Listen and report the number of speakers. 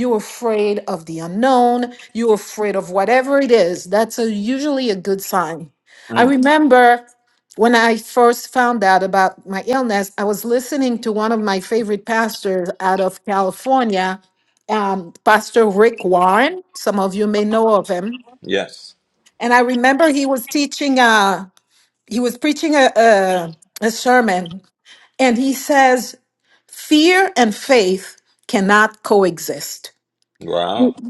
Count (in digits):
2